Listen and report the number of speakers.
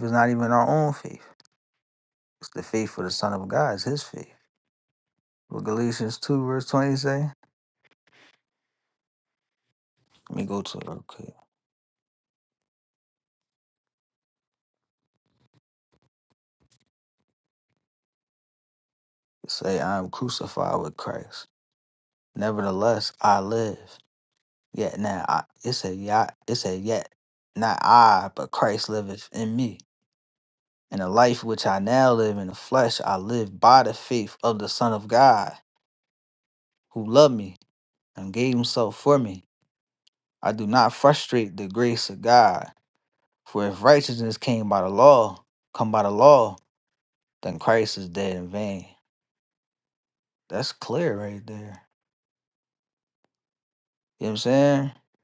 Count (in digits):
1